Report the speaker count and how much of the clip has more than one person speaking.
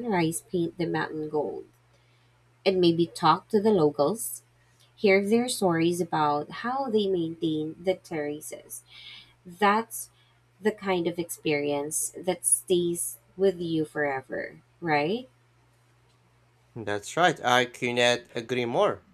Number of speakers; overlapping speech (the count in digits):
2, no overlap